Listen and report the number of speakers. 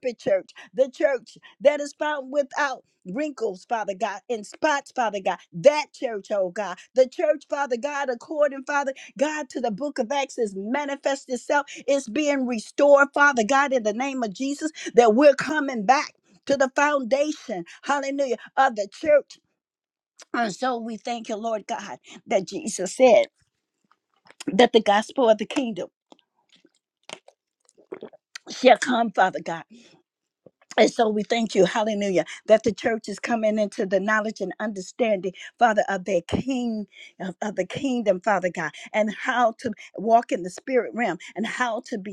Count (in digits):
1